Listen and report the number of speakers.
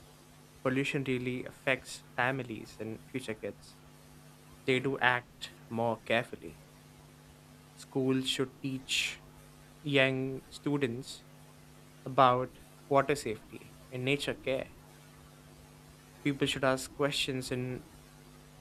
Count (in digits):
1